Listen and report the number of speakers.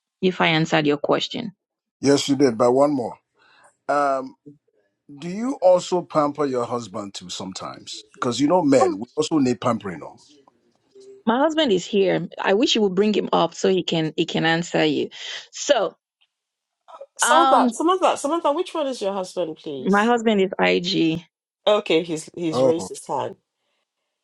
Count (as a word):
three